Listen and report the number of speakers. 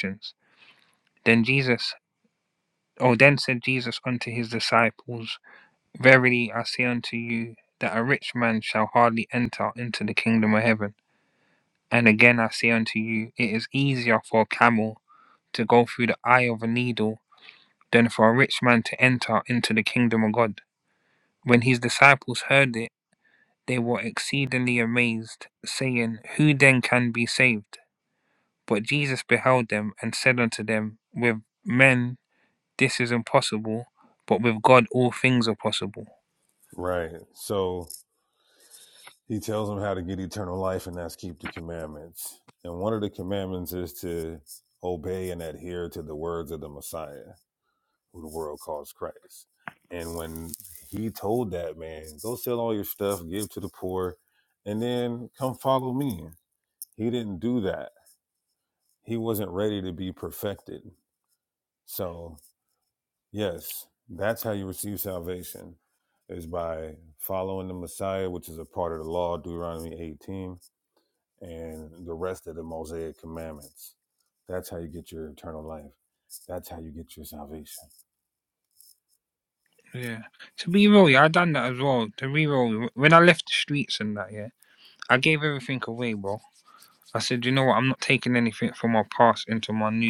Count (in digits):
2